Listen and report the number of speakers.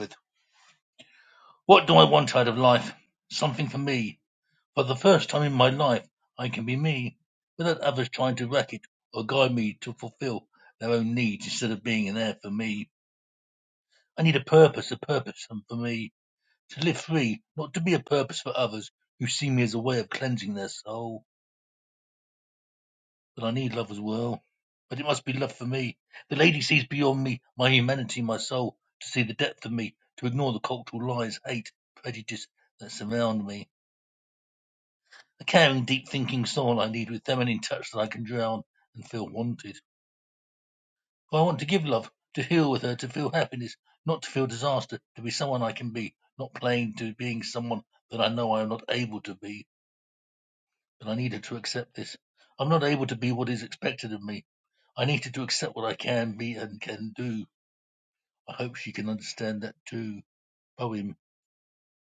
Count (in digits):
1